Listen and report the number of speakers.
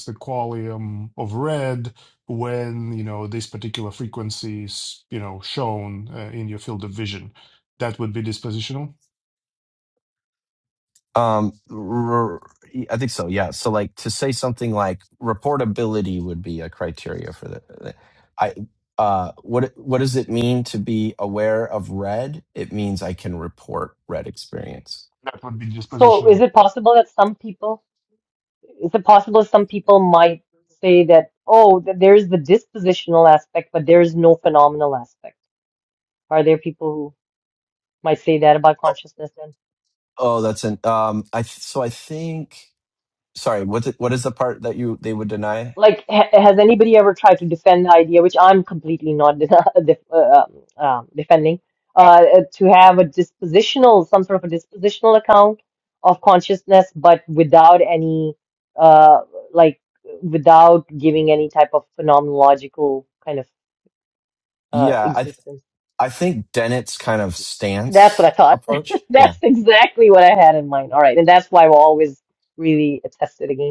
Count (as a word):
three